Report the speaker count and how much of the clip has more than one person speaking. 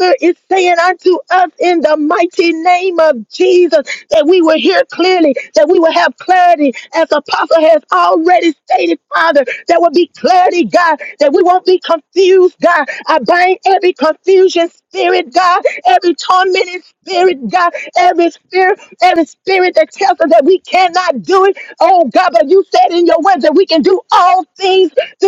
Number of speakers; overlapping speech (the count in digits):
1, no overlap